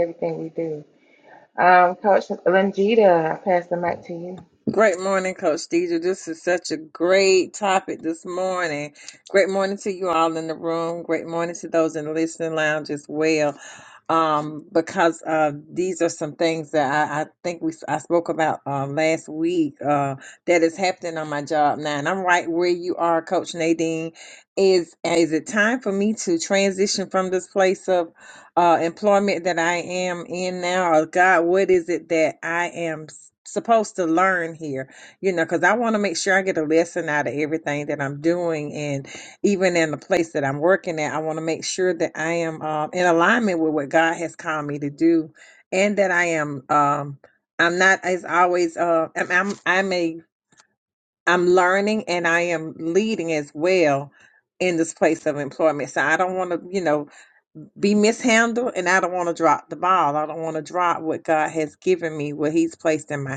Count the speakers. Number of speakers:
two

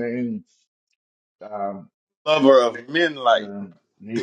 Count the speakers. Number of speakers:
two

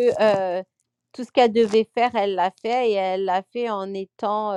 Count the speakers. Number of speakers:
one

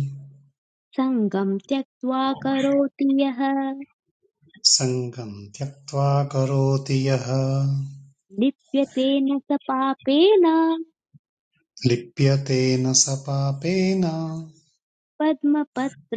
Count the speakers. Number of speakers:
two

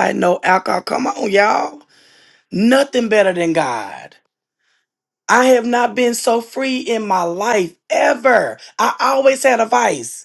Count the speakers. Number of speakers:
one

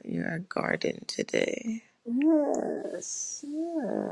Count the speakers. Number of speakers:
two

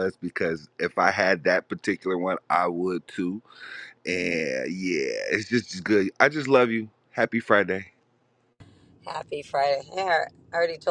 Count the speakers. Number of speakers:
two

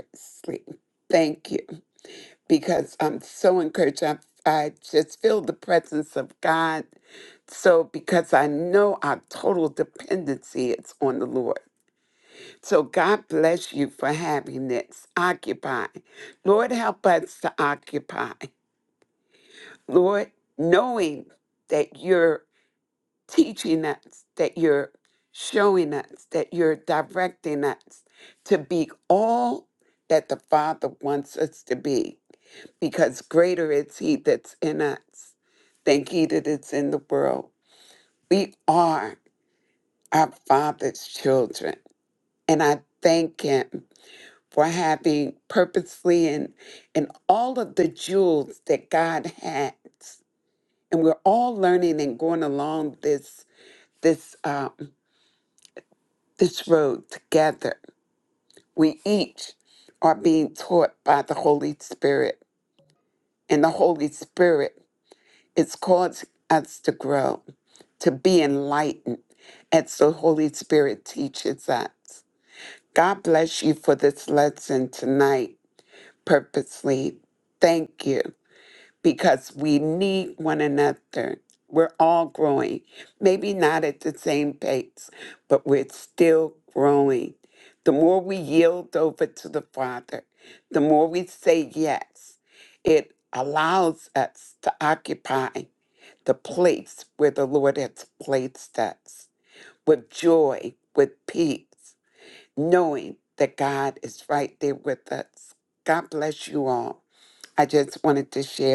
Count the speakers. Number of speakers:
one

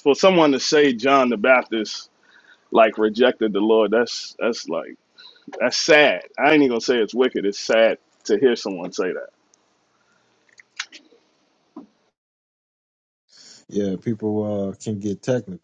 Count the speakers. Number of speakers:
two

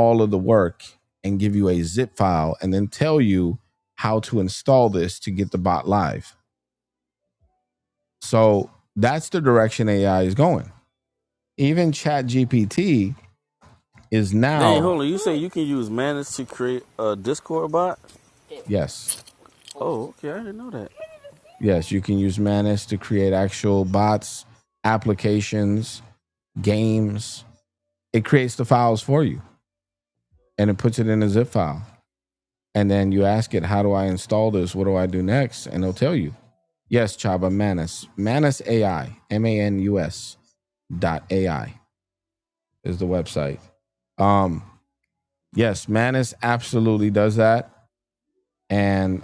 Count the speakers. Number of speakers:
two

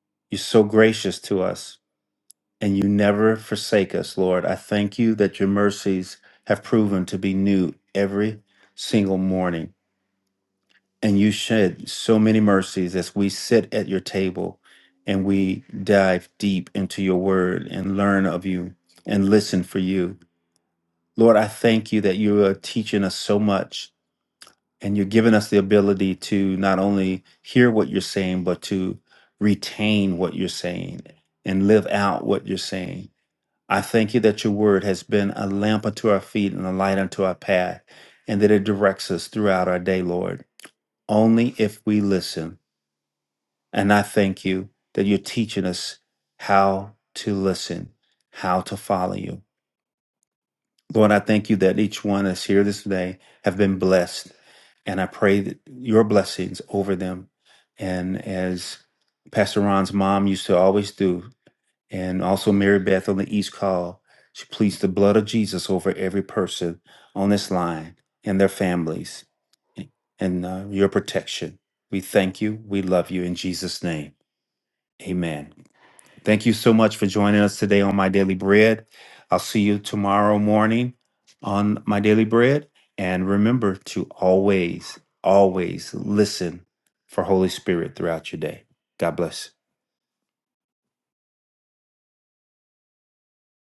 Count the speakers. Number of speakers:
one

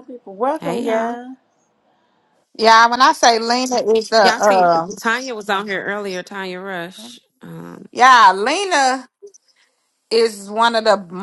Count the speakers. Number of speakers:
three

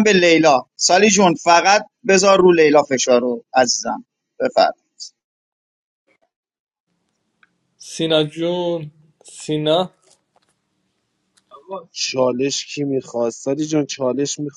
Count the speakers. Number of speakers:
three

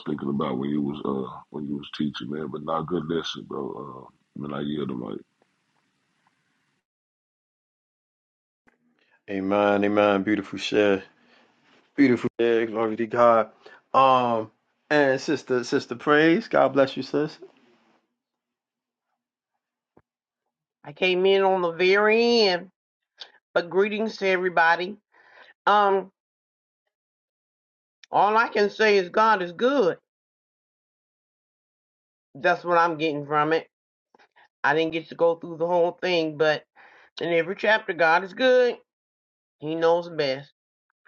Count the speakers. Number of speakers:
three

